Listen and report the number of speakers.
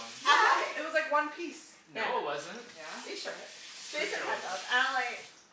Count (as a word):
three